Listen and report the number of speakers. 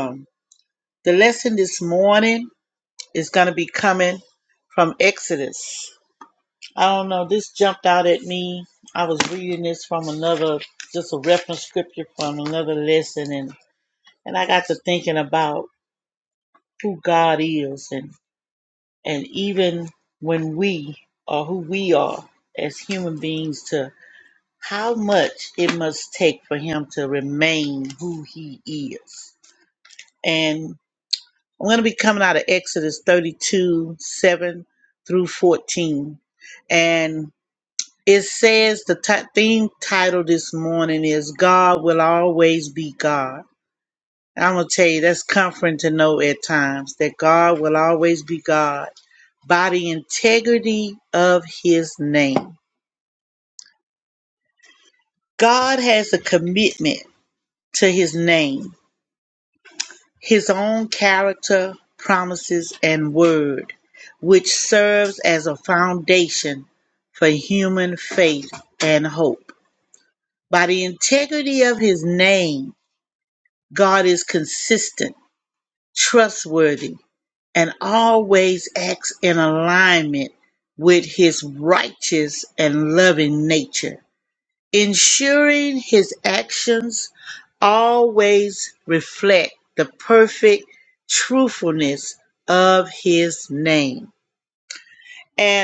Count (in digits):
1